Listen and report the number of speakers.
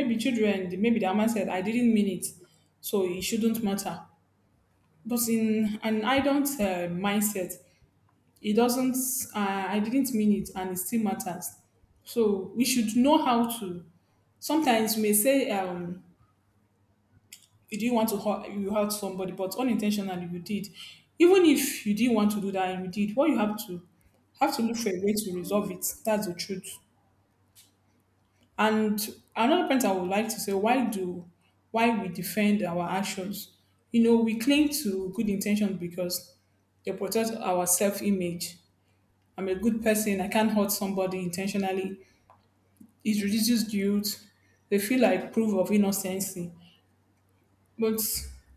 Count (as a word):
one